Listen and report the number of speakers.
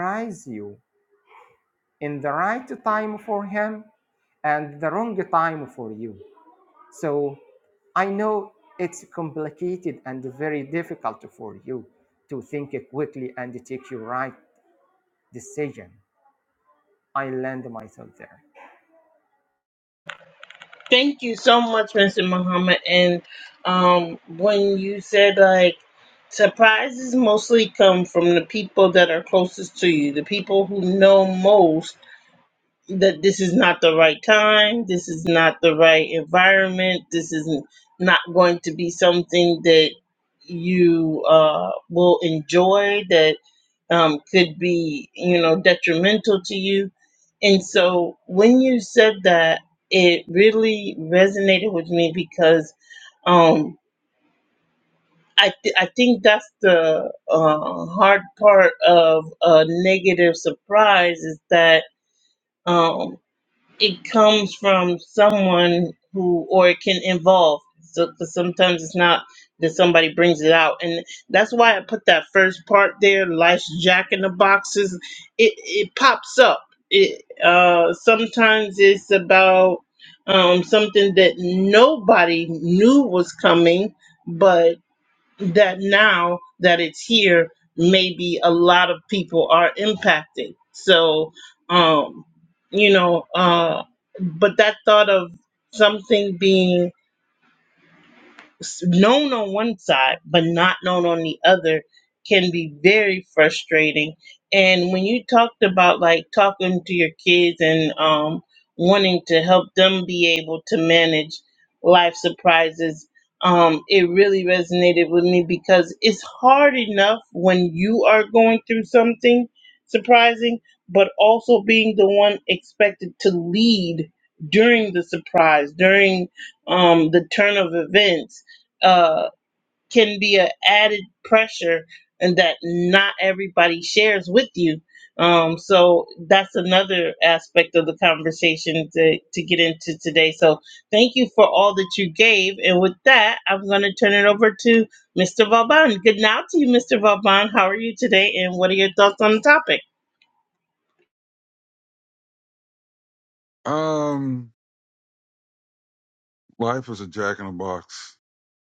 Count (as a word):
three